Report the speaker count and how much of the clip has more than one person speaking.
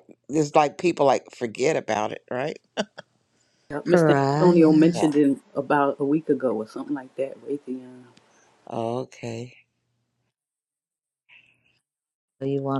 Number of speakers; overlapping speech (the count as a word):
three, about 10%